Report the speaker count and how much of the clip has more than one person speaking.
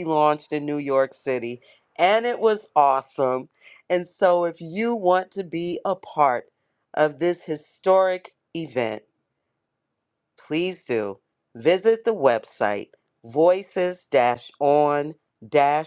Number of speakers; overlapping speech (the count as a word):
one, no overlap